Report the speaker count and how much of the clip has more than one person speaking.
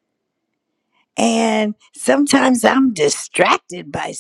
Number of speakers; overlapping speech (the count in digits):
1, no overlap